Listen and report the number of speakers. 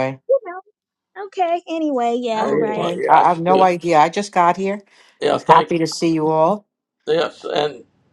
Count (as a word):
three